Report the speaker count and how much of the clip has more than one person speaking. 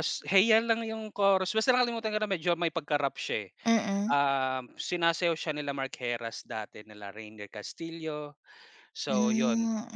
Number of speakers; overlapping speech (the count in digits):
2, about 7%